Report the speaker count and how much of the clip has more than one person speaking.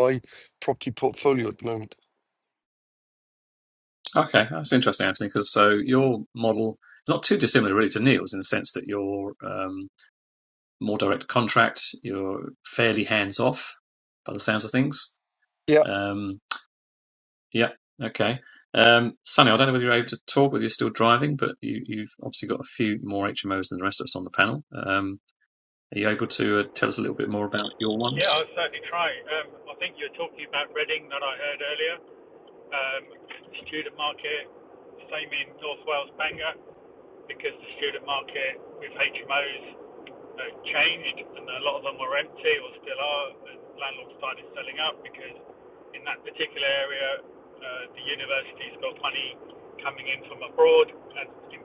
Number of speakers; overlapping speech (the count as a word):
three, about 1%